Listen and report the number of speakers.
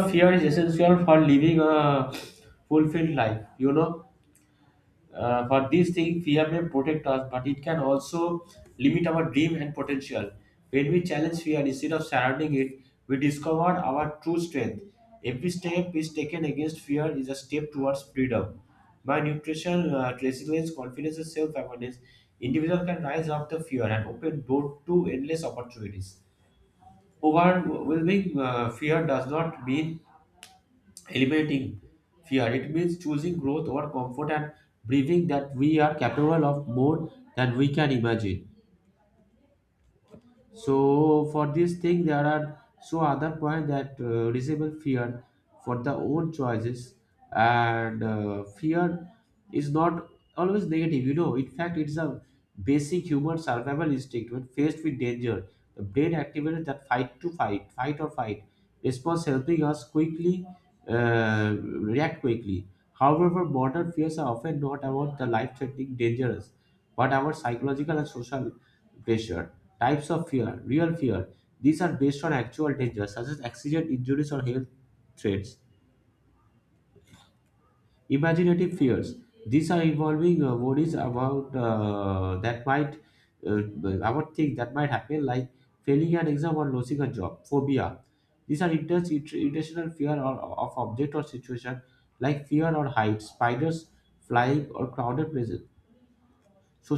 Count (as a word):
one